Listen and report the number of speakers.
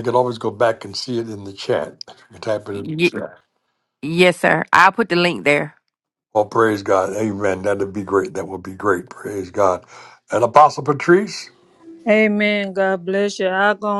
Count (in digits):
3